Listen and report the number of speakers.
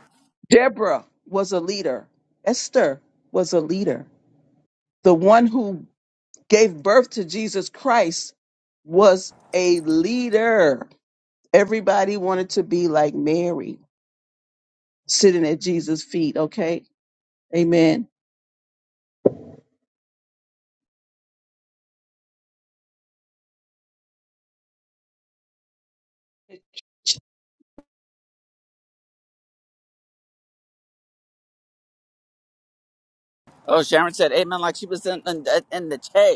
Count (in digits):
2